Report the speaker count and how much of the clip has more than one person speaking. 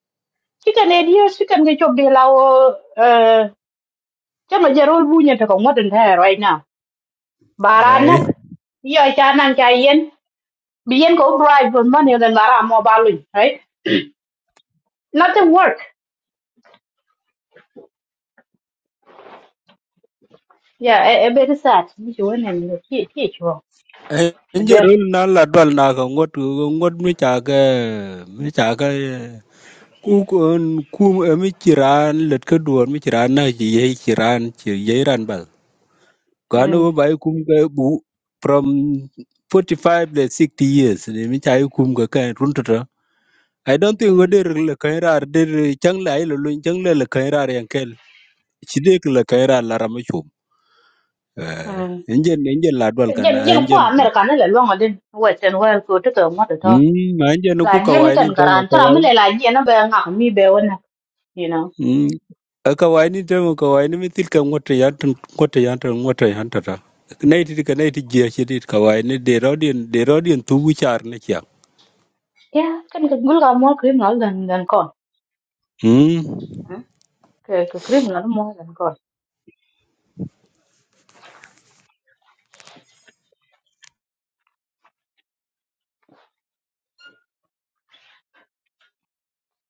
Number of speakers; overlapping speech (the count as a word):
two, about 4%